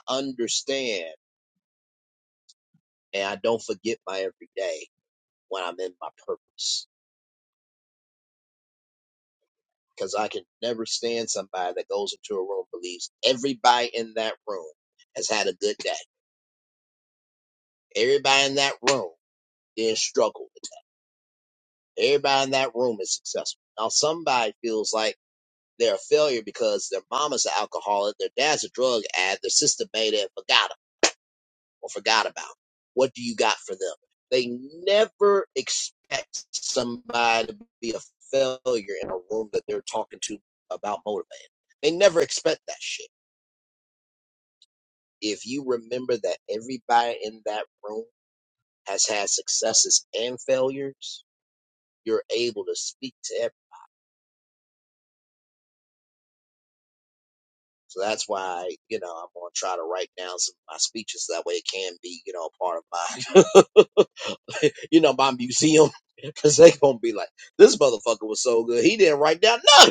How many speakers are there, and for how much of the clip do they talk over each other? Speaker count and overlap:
1, no overlap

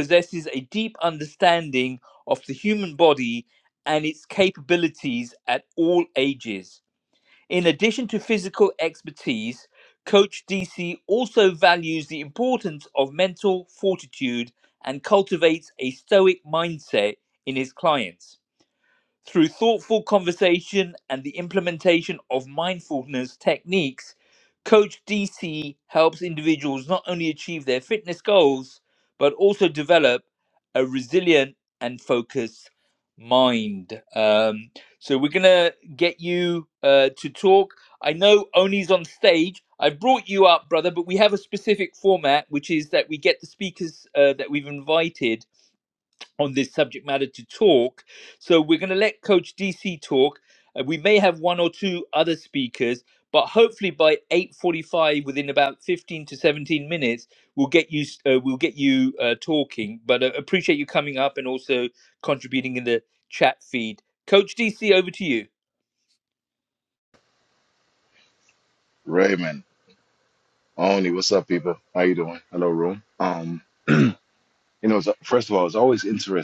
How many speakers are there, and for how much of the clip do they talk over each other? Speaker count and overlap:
2, no overlap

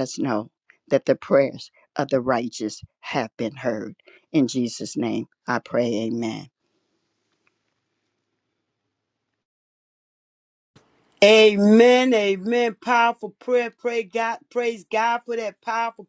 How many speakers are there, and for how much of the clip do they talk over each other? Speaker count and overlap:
2, no overlap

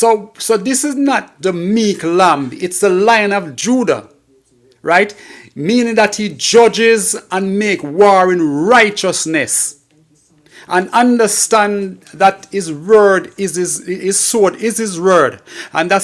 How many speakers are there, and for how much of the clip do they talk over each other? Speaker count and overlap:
1, no overlap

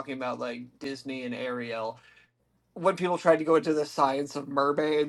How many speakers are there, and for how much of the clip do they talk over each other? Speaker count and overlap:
1, no overlap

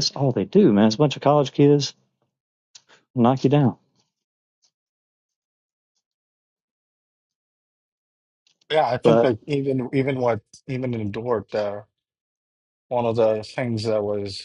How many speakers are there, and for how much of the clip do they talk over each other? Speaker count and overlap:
2, about 2%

